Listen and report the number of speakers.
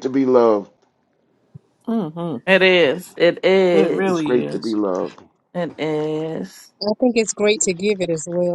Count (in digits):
4